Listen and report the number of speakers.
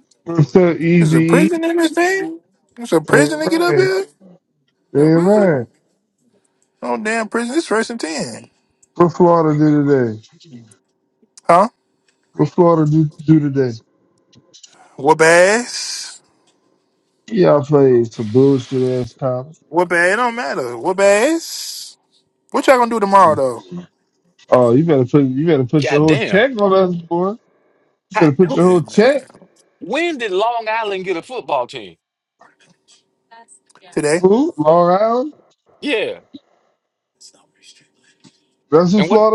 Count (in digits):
3